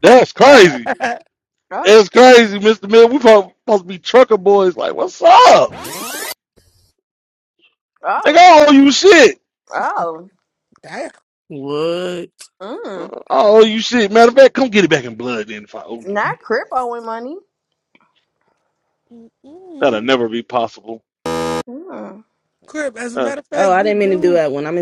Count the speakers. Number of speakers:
4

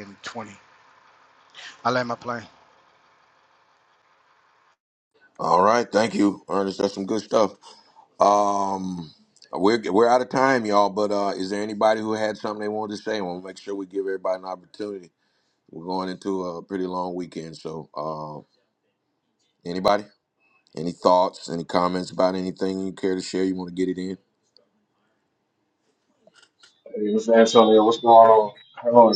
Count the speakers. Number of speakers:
3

